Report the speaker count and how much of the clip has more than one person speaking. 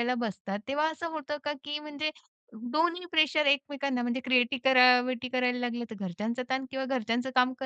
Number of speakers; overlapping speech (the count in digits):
1, no overlap